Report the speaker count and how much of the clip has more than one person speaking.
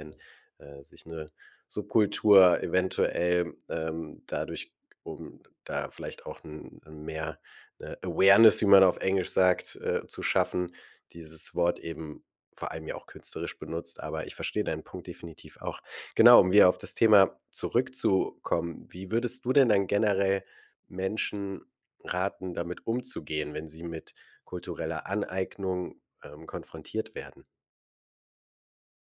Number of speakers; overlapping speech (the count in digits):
1, no overlap